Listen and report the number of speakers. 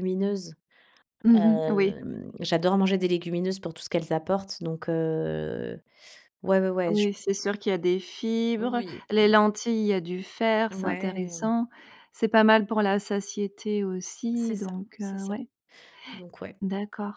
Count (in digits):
2